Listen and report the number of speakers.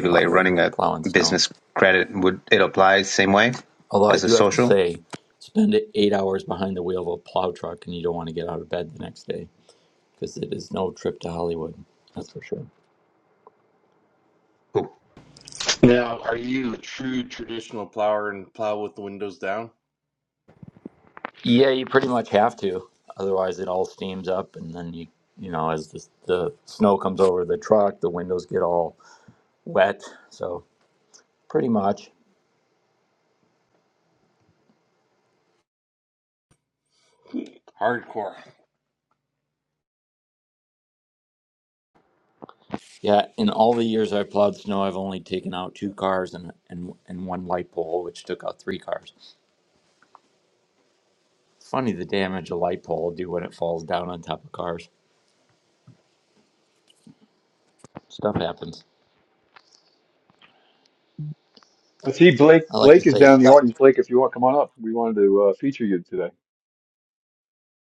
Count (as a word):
four